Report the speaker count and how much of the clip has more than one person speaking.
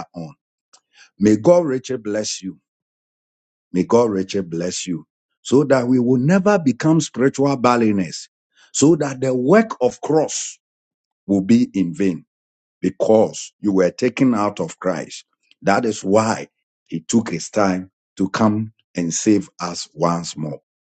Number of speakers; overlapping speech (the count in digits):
1, no overlap